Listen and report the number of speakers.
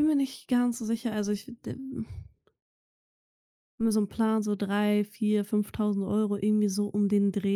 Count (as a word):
one